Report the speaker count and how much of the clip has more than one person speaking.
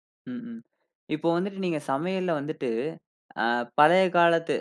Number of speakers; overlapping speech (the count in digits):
1, no overlap